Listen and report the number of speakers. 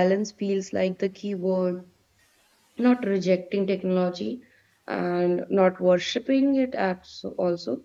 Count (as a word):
one